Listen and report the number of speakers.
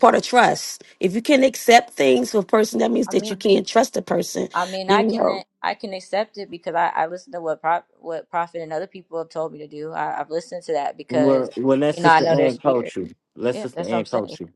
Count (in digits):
3